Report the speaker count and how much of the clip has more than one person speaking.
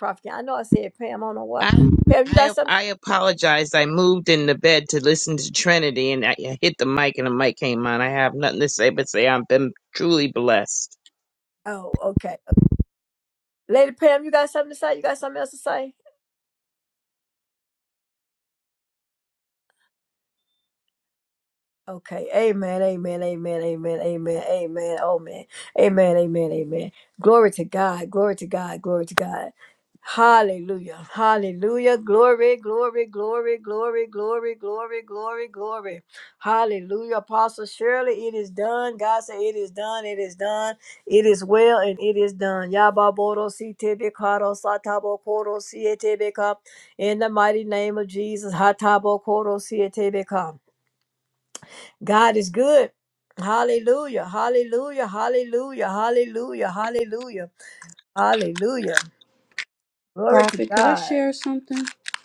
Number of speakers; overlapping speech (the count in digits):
3, about 2%